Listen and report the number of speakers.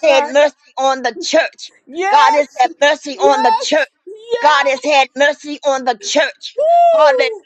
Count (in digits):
2